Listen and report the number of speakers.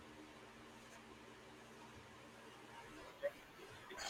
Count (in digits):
0